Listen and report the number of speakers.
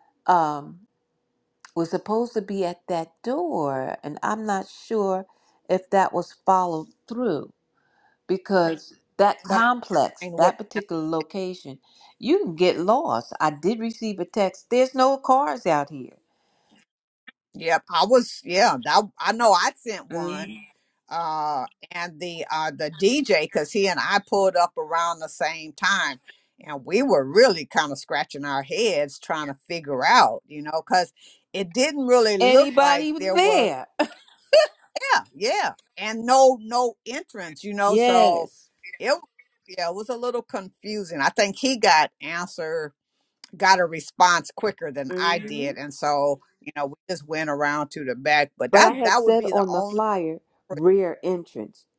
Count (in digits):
2